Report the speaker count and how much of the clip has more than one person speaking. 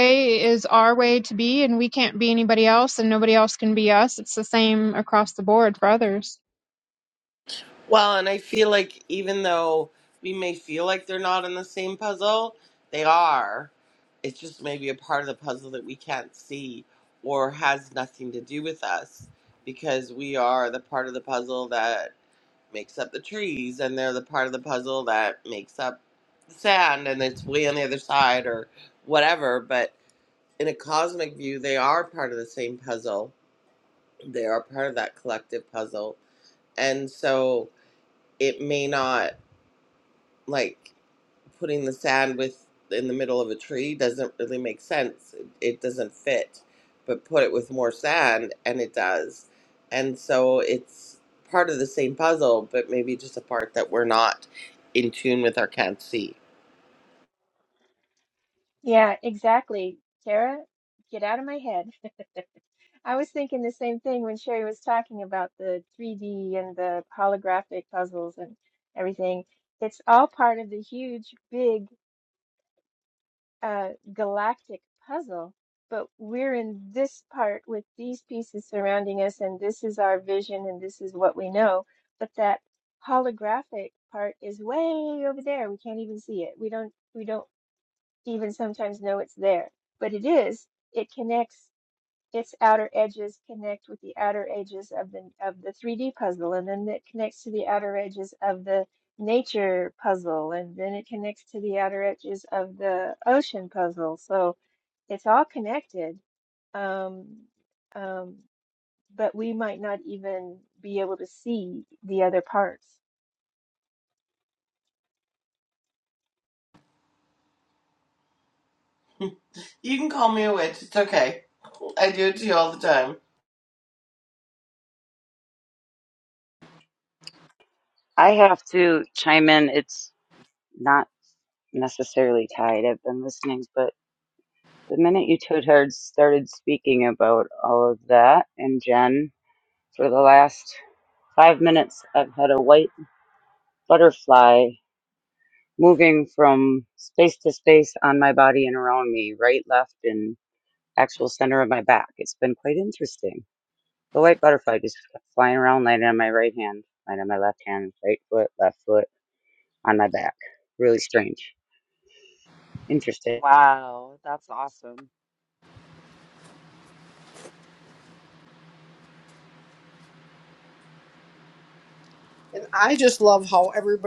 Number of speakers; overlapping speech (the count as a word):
six, under 1%